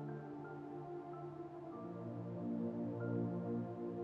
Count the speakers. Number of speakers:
0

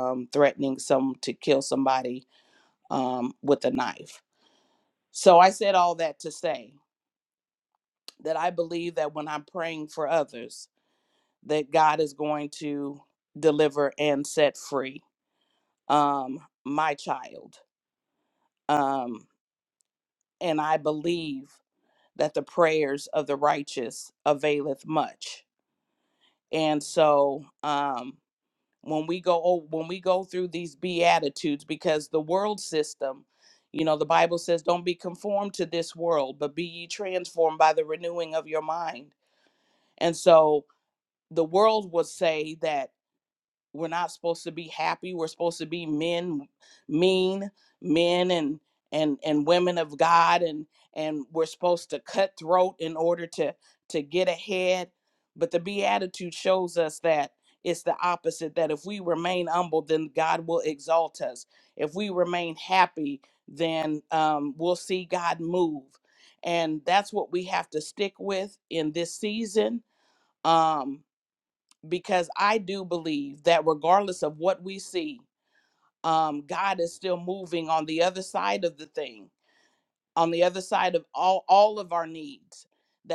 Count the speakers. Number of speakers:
1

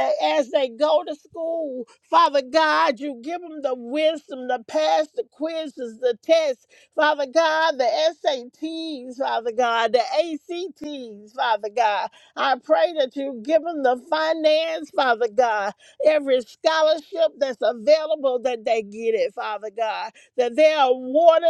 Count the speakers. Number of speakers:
1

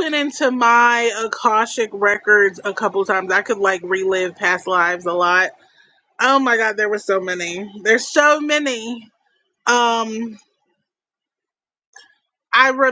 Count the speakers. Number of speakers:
1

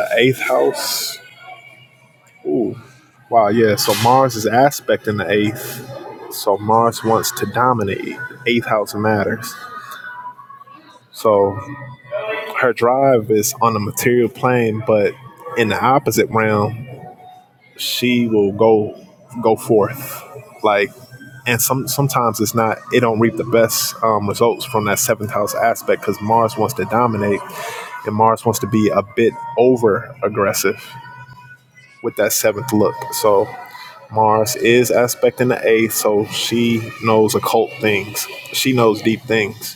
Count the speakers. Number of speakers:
1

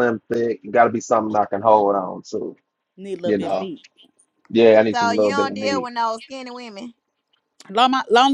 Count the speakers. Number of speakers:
3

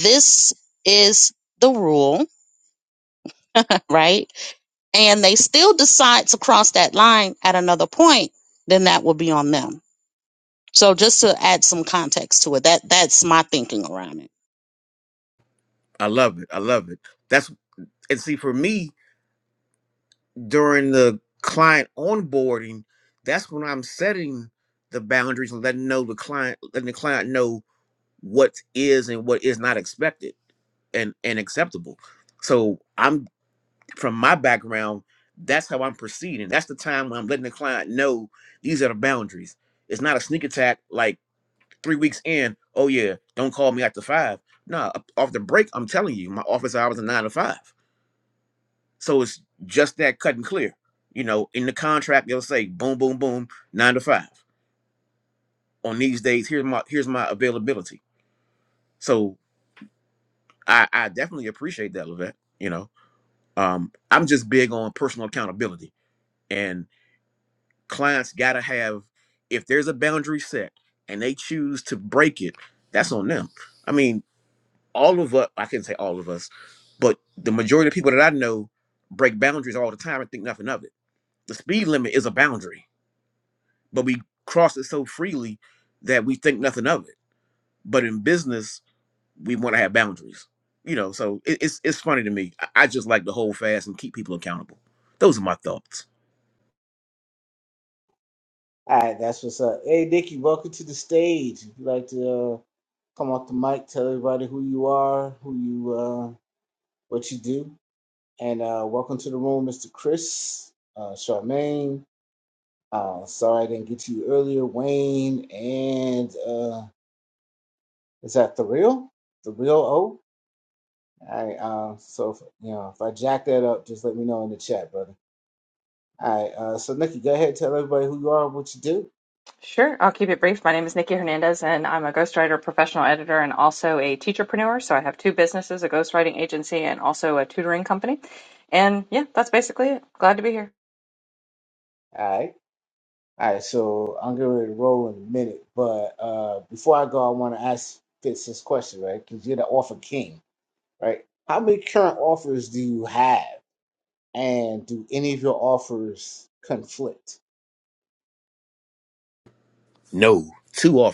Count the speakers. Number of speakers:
4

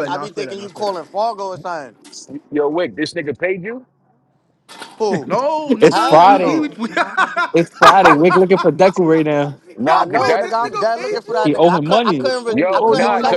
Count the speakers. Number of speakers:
4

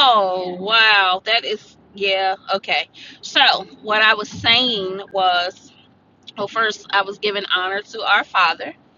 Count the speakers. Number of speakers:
1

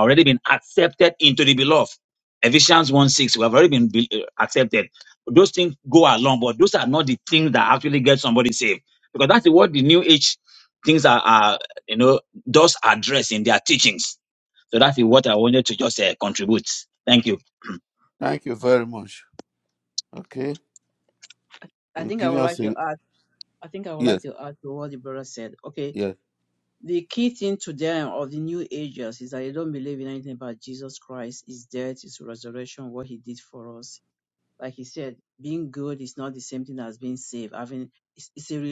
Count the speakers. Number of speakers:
3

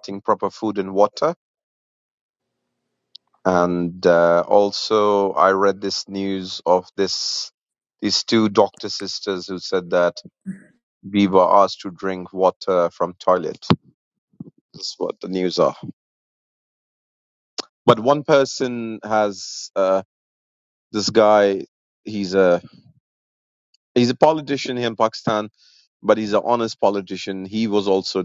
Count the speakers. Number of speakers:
1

